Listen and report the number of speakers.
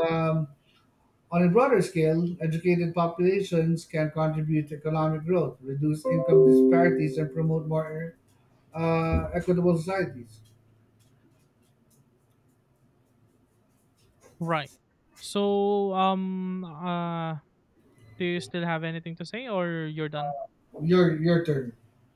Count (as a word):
two